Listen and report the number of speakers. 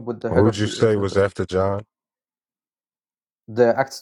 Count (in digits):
2